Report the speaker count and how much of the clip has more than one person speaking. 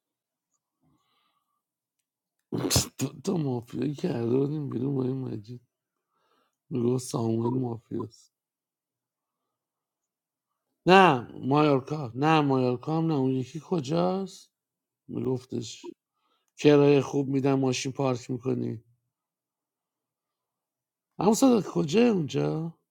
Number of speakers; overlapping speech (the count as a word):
one, no overlap